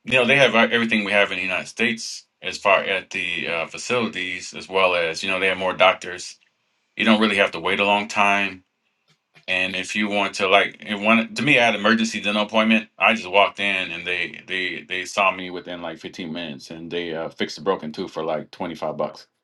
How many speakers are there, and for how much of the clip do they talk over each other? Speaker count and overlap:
1, no overlap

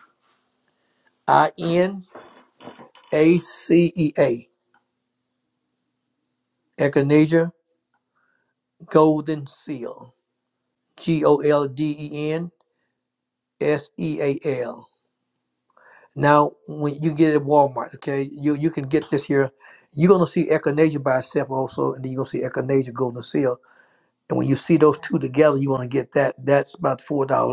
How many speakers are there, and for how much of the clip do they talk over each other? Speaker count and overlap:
1, no overlap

